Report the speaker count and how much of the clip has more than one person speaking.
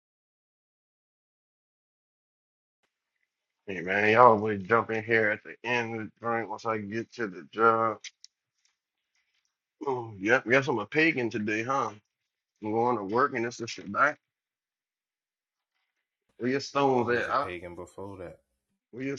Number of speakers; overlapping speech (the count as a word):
two, about 2%